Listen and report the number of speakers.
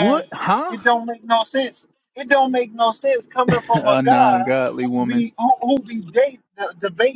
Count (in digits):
2